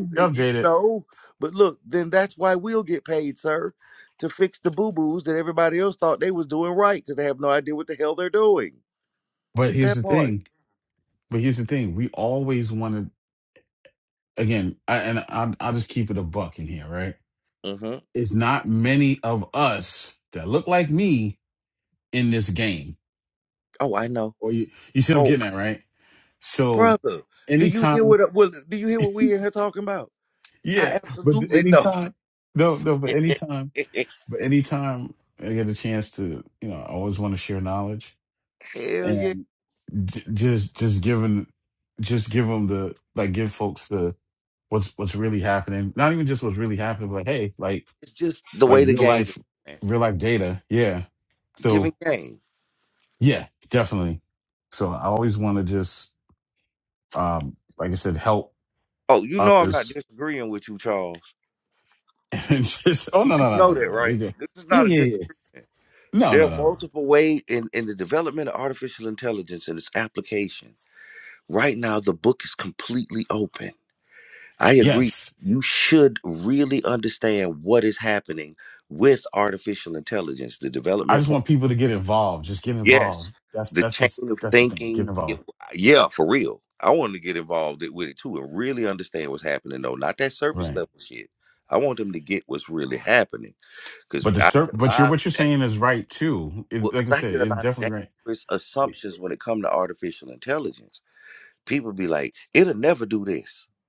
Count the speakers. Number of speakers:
two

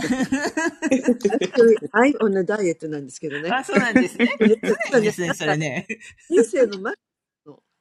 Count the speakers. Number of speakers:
two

